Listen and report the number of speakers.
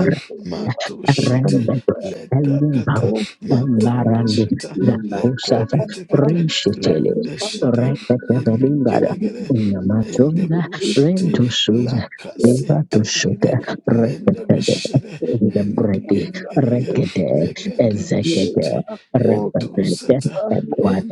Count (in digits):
3